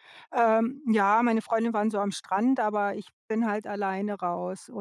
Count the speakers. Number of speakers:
1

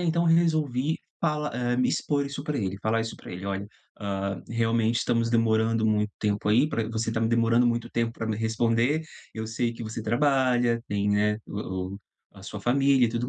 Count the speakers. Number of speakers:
1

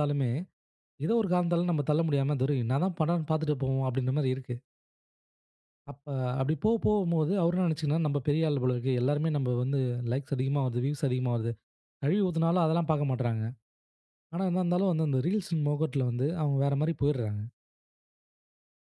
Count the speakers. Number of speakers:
1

